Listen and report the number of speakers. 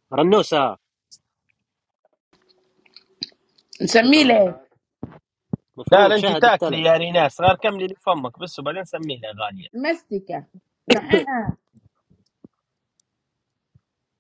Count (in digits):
3